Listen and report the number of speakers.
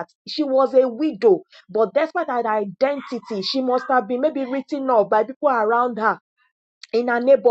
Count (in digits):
1